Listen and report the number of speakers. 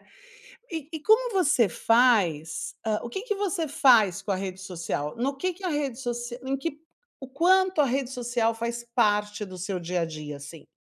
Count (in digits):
1